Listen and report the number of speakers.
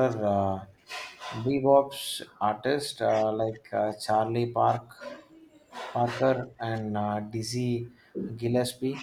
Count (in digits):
1